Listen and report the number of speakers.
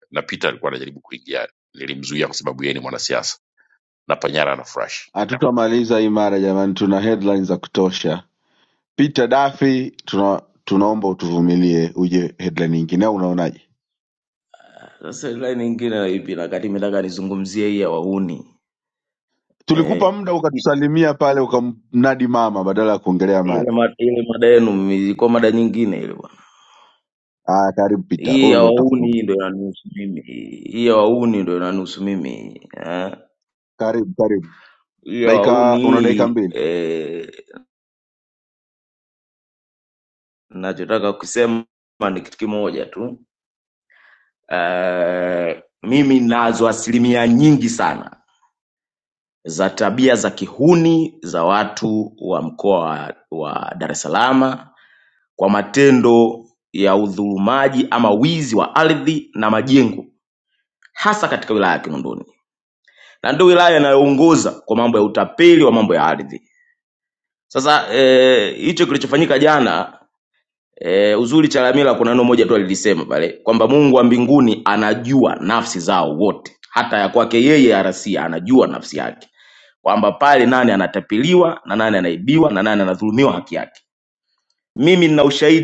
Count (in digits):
3